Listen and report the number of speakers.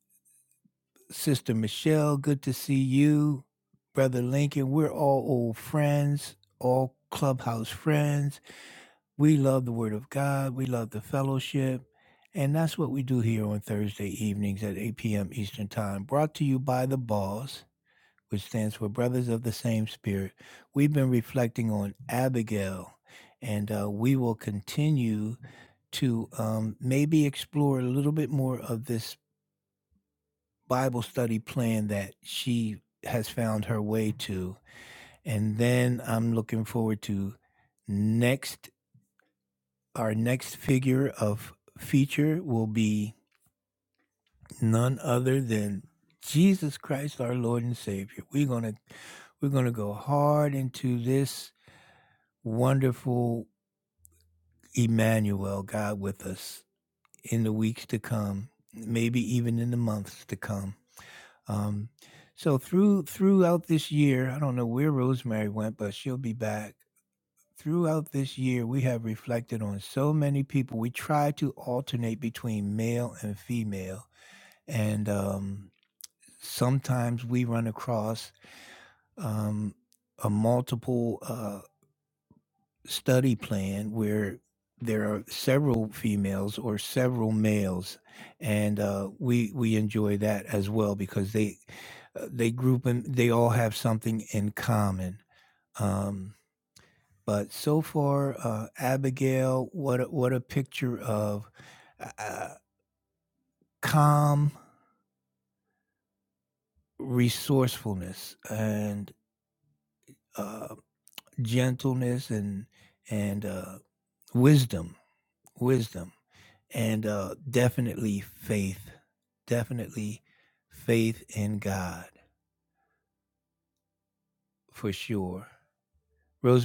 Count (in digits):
1